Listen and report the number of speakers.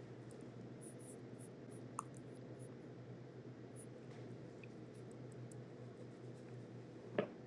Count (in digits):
0